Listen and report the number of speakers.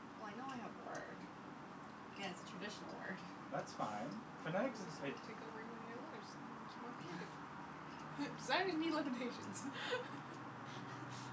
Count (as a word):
three